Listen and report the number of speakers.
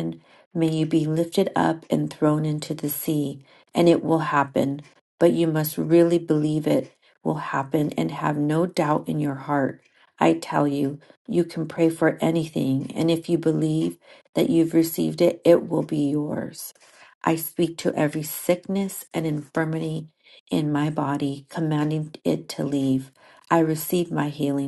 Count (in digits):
1